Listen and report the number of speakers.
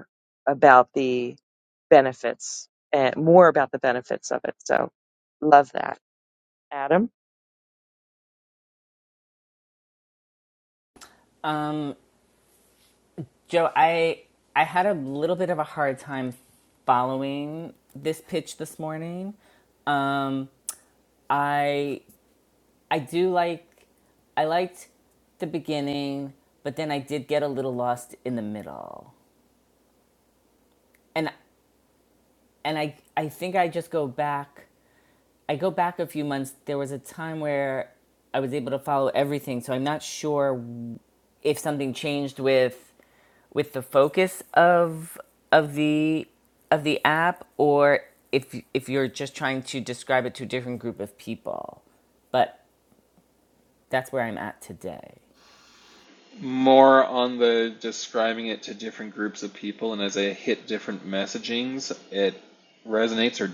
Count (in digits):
3